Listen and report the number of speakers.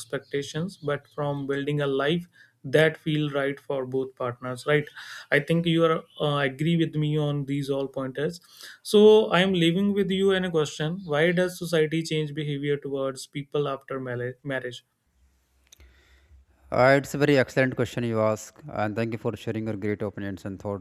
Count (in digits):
2